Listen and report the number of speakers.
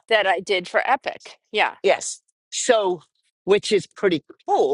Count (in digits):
2